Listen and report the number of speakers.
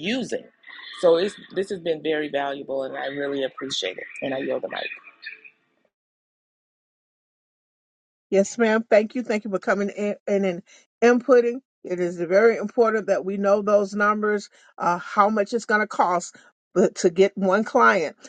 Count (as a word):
two